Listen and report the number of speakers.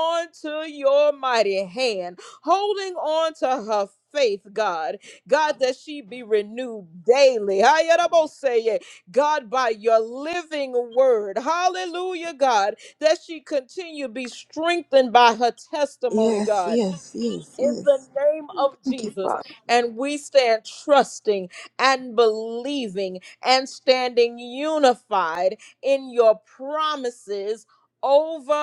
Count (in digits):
2